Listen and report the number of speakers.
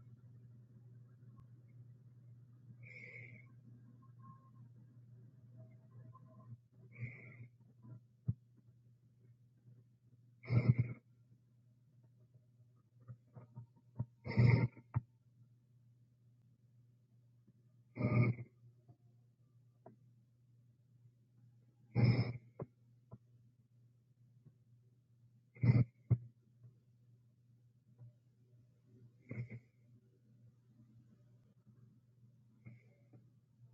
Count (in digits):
0